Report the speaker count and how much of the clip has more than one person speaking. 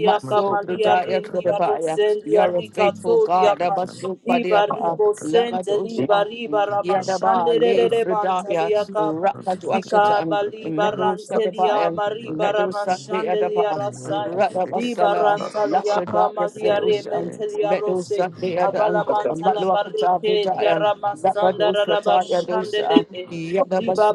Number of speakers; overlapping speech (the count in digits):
2, about 80%